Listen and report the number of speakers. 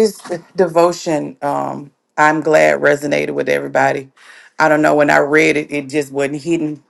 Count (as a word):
one